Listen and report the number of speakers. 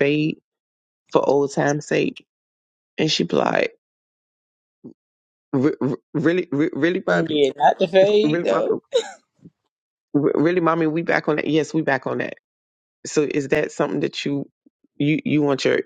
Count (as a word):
two